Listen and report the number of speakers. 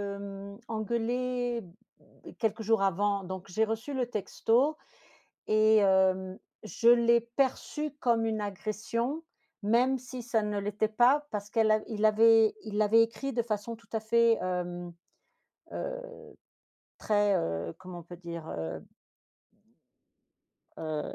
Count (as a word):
one